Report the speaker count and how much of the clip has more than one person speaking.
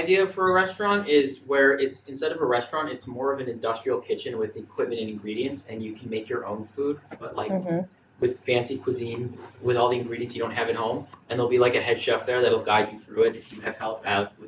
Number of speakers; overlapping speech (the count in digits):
1, no overlap